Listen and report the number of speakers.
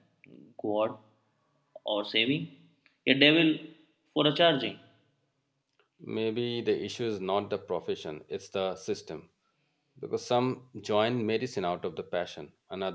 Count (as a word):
two